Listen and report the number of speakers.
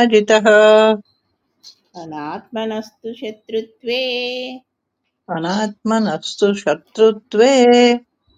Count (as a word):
two